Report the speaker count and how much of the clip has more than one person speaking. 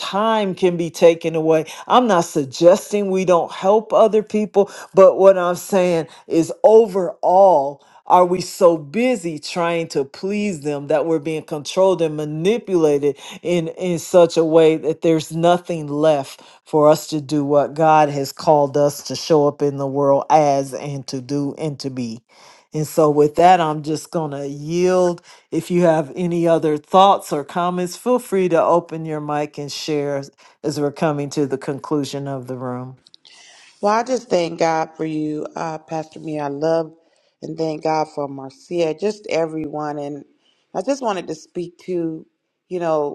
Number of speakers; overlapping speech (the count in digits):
2, no overlap